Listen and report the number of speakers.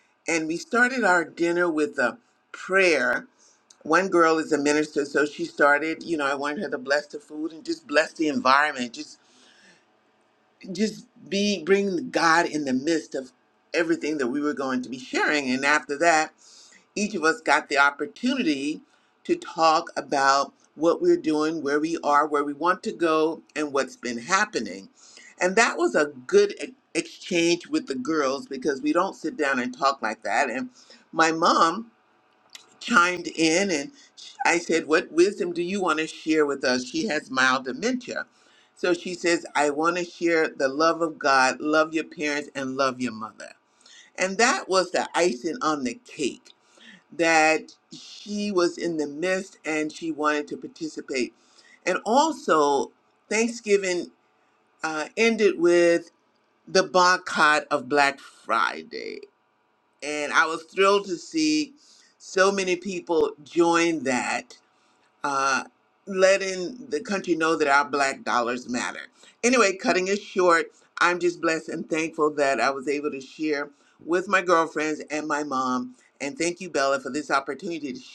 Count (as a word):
one